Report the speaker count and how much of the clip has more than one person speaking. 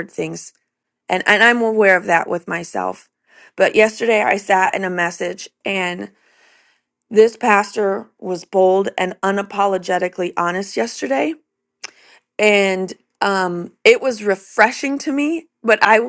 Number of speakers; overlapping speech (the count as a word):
one, no overlap